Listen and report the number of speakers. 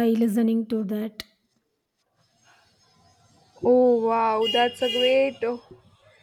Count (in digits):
2